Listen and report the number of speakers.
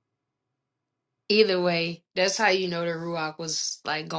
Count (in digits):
1